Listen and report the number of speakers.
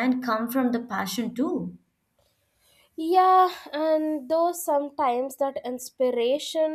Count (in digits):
2